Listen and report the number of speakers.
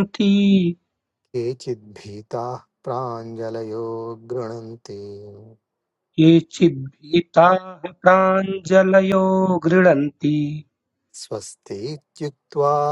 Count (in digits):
2